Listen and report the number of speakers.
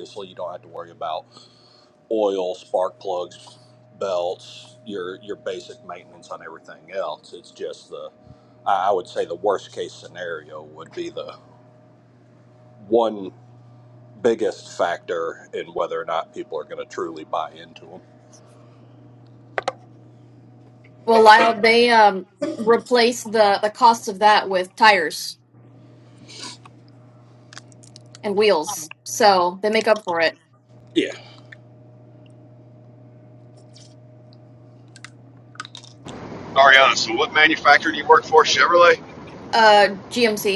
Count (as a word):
three